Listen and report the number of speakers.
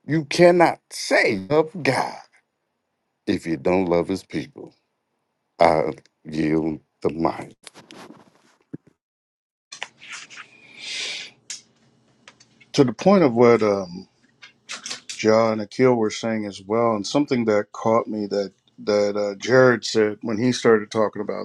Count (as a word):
two